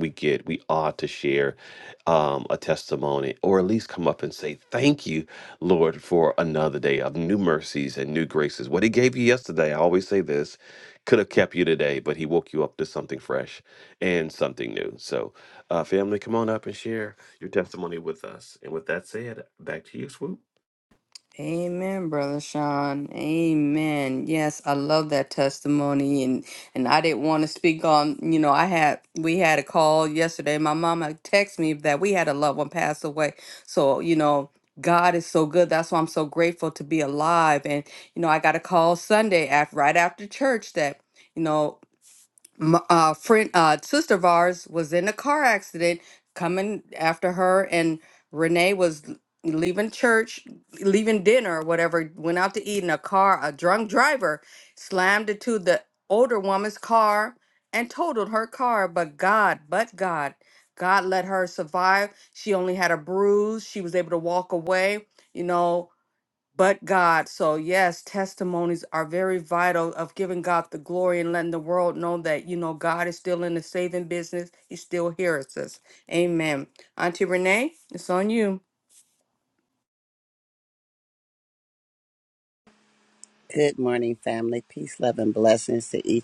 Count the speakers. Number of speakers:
3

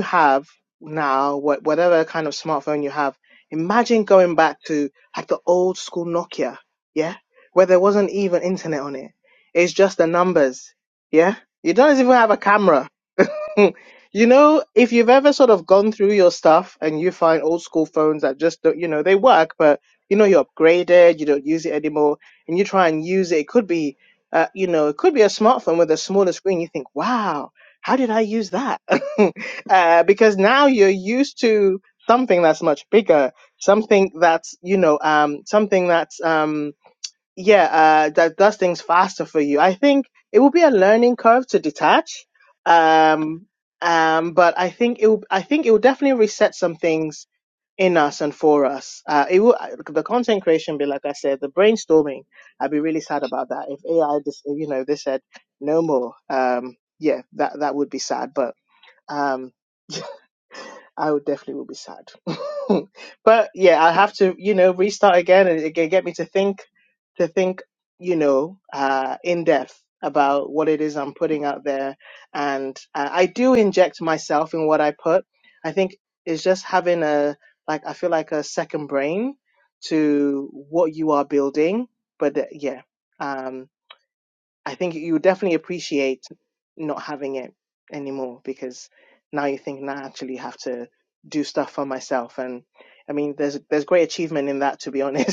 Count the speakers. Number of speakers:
1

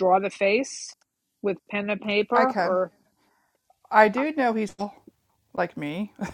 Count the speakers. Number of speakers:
2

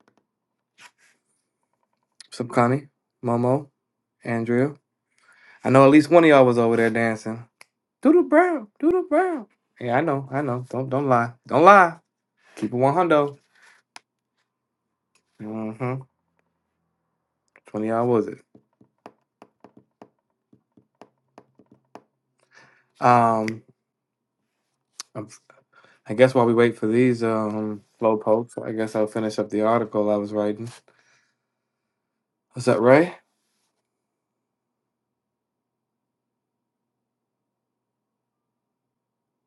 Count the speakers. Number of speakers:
1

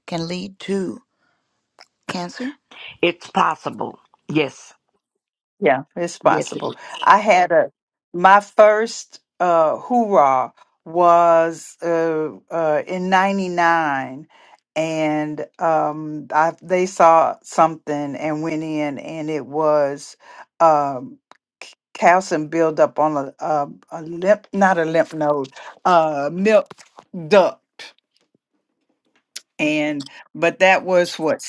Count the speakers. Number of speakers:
3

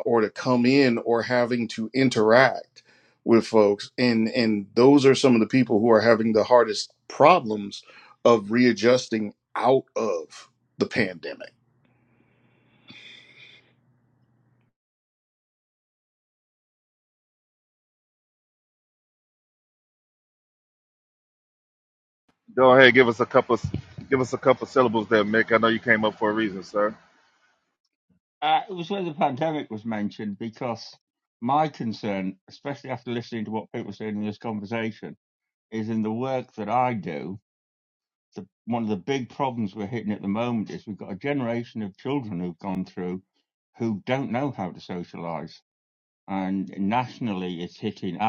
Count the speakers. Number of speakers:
3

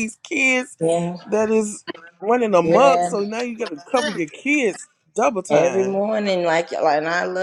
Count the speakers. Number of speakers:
2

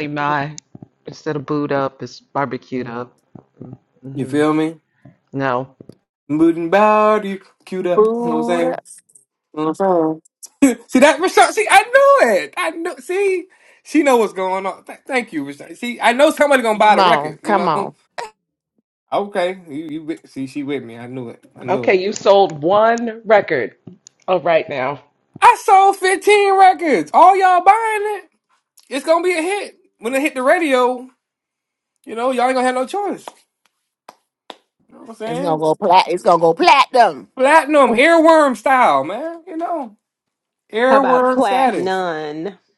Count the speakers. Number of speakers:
4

